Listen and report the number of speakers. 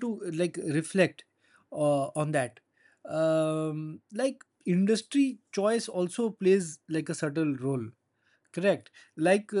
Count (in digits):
1